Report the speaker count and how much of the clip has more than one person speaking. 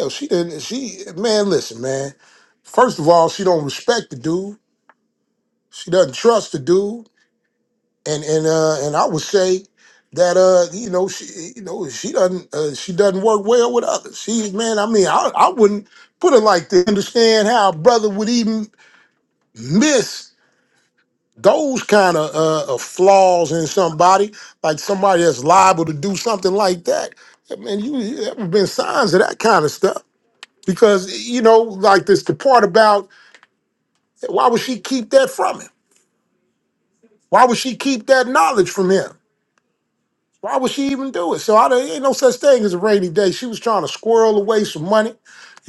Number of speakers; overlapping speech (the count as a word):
one, no overlap